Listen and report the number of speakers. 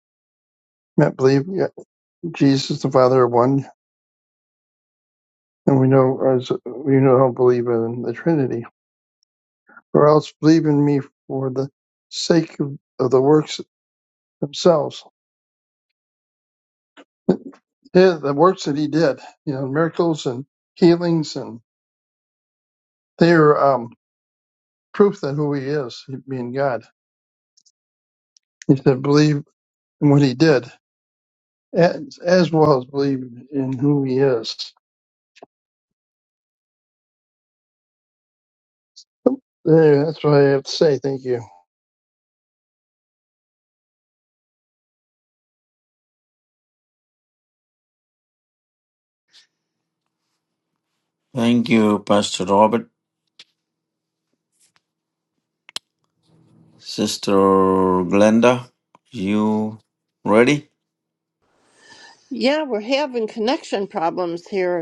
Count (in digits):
3